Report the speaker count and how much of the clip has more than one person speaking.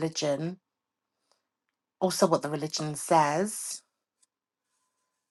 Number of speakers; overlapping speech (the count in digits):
1, no overlap